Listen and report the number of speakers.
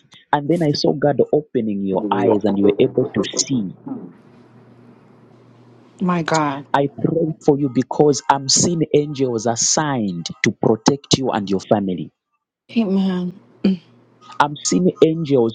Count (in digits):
2